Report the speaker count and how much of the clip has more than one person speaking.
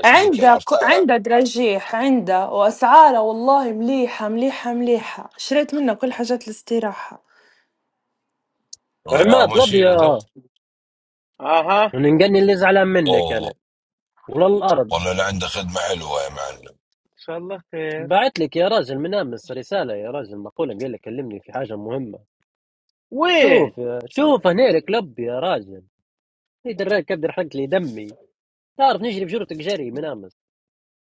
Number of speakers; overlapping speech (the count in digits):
4, about 9%